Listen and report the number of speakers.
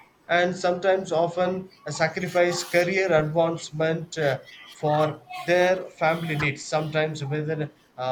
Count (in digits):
1